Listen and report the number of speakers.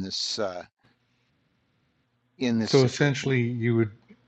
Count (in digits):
2